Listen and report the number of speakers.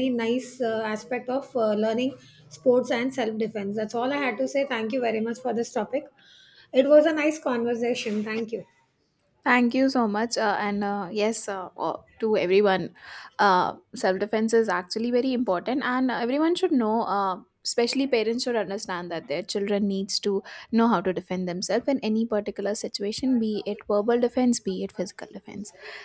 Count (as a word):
two